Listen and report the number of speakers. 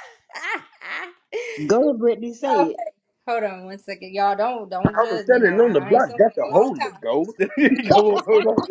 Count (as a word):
three